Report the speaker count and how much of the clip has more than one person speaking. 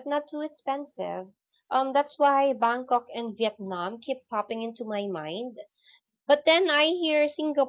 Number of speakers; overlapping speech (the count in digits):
1, no overlap